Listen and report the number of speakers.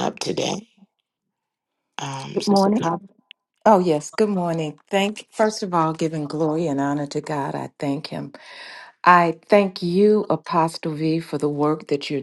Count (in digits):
2